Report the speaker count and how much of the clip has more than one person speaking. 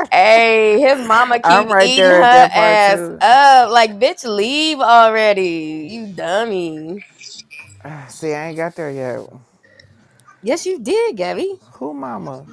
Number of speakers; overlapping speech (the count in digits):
2, about 14%